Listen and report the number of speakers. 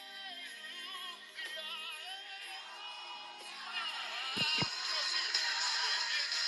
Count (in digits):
0